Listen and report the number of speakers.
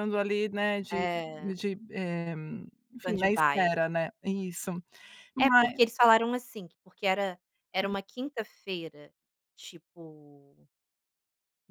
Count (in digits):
2